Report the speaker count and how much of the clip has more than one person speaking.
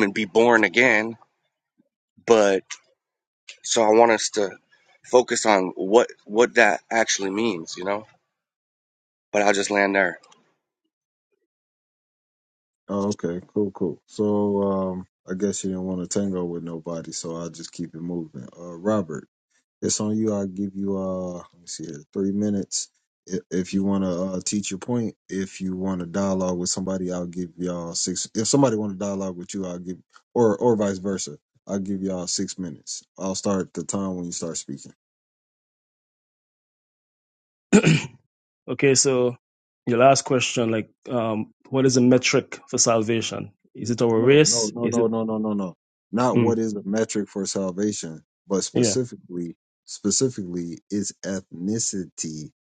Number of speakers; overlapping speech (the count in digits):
3, about 2%